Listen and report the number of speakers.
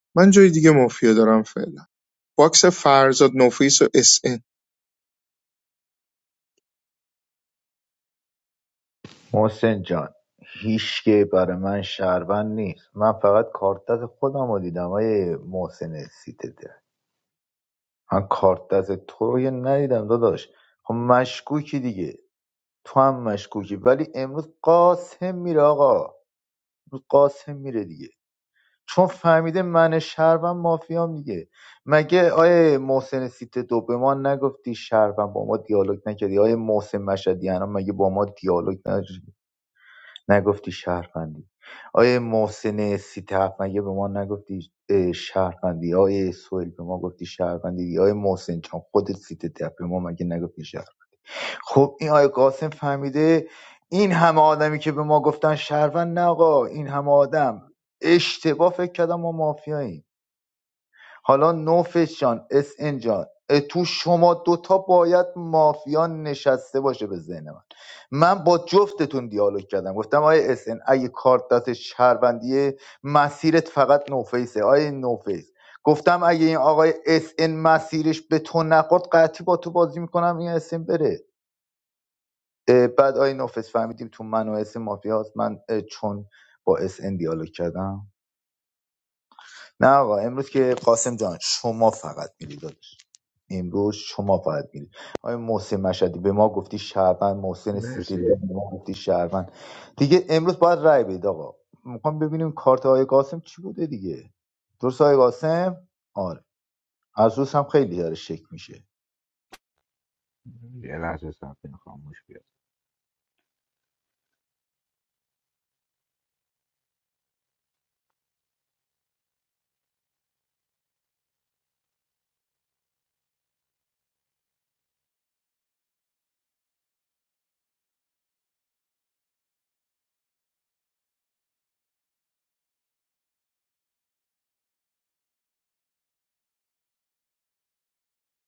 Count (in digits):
3